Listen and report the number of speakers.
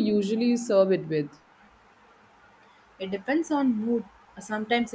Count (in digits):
2